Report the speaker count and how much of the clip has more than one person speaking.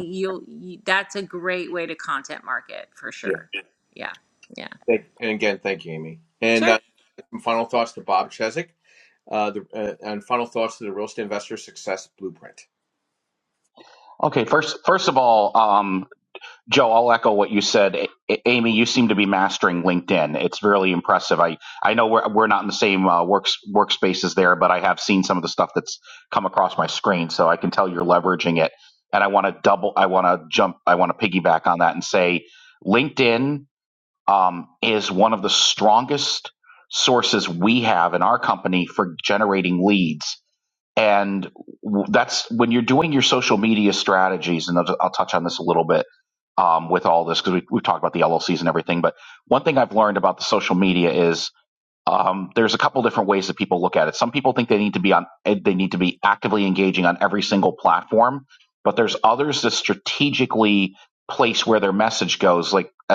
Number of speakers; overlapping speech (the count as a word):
three, about 1%